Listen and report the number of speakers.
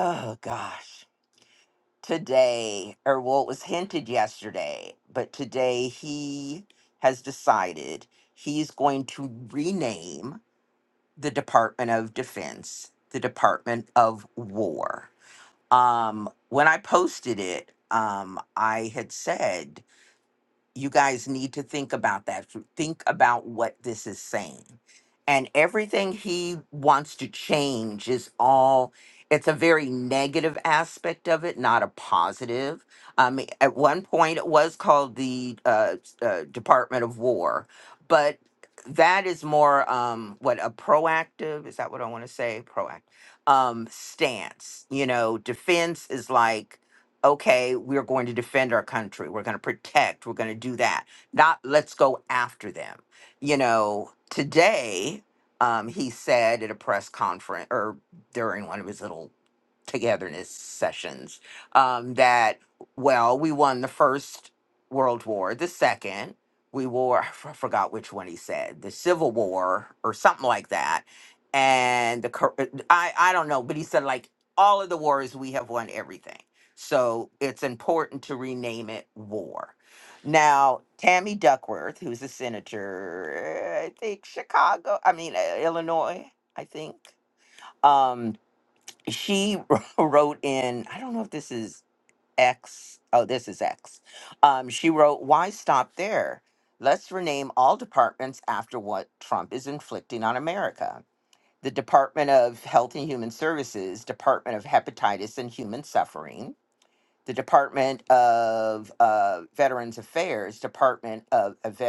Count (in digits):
1